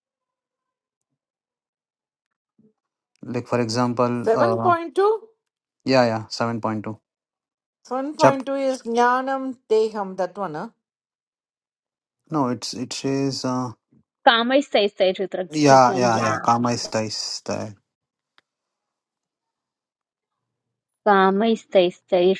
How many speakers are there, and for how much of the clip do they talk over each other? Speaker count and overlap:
three, about 3%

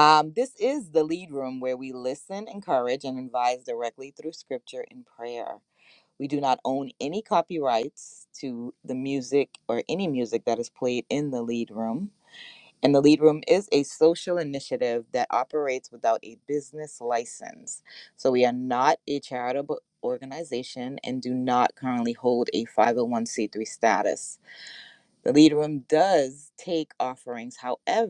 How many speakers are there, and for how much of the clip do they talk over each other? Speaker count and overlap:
one, no overlap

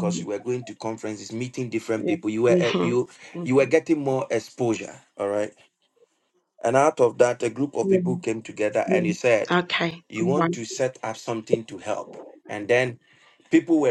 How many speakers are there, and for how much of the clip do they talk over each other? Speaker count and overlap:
two, about 12%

